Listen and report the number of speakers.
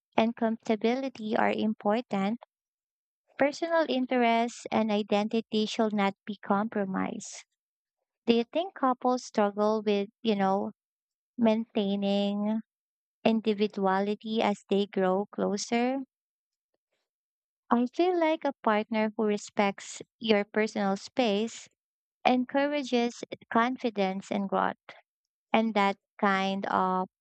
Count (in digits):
1